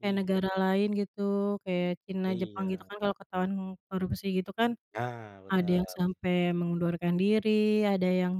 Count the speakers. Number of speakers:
two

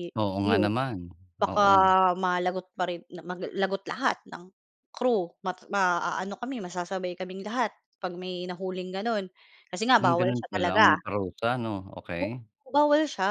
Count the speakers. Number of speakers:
two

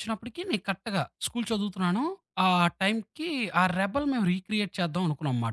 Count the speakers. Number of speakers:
one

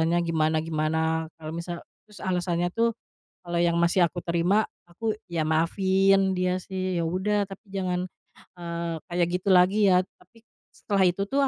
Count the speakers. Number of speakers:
one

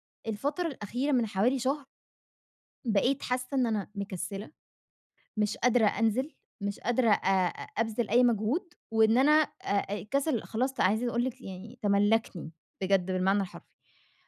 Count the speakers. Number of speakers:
one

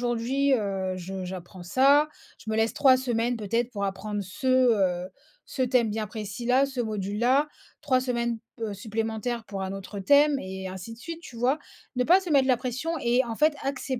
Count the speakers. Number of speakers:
one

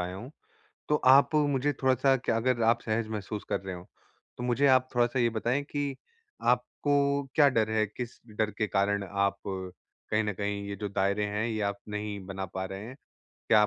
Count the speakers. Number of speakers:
one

